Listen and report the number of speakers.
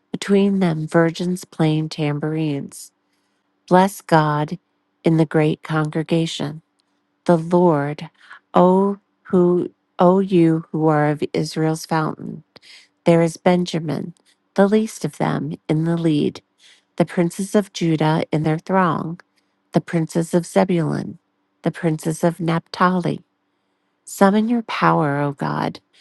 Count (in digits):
1